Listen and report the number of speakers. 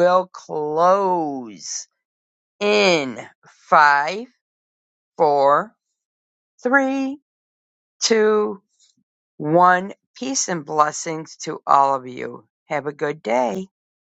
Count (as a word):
one